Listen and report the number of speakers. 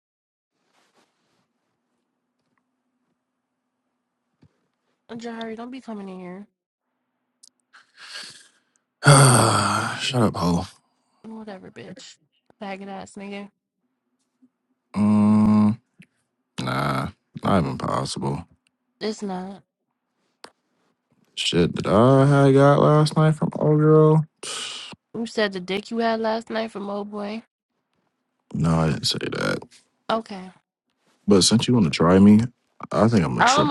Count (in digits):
2